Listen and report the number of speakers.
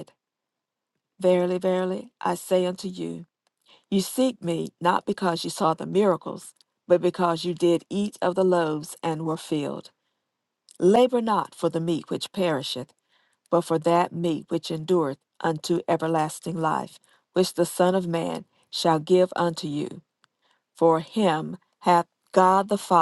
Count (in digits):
1